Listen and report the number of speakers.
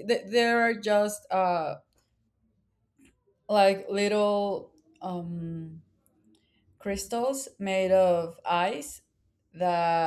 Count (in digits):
1